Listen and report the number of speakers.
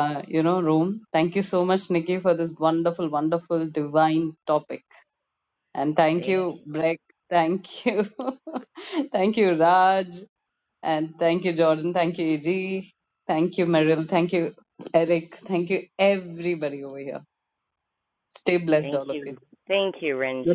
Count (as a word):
two